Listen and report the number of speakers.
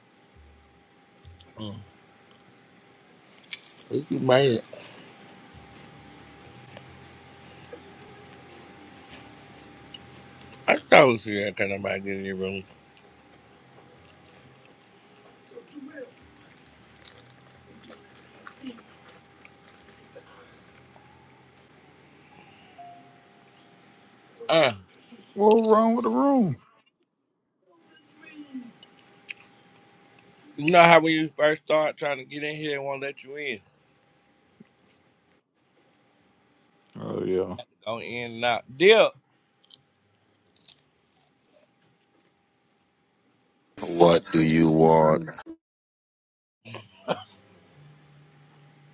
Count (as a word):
three